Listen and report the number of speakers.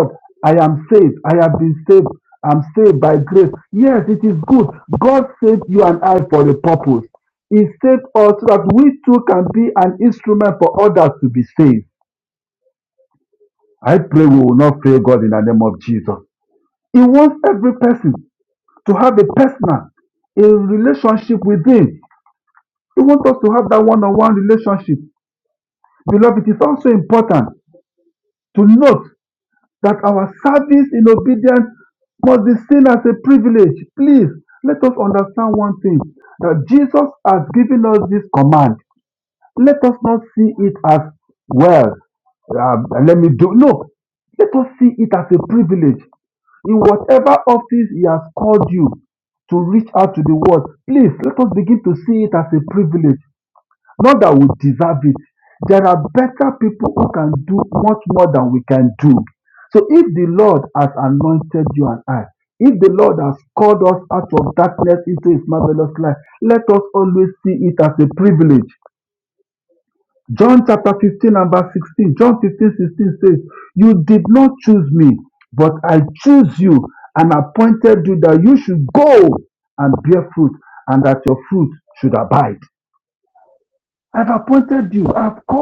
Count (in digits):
1